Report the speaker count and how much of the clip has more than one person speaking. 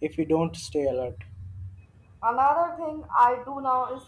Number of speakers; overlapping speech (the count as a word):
two, no overlap